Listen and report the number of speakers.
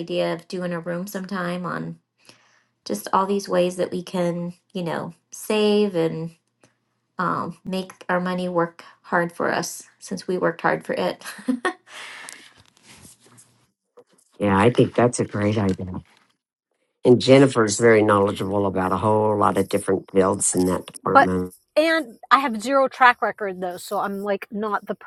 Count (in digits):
3